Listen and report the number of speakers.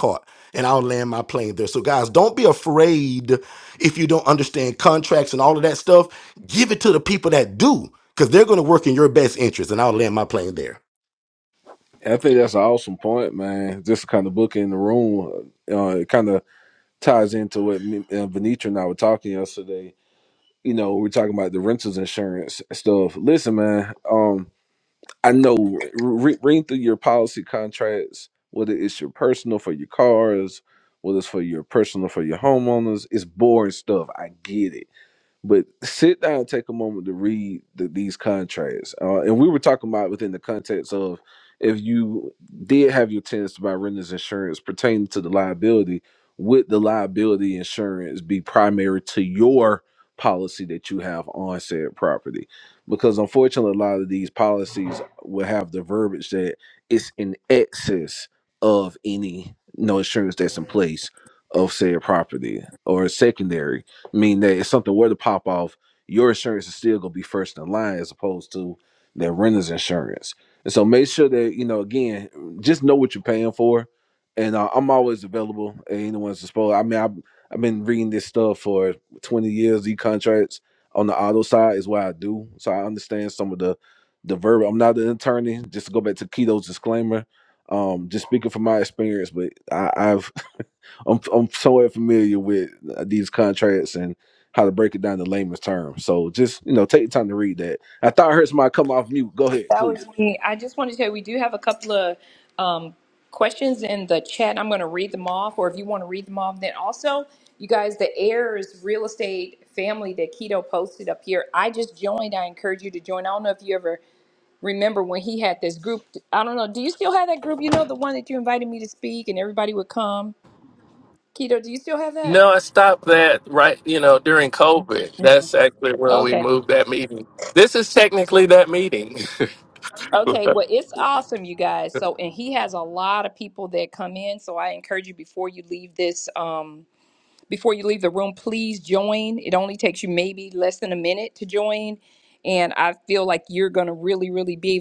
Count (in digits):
4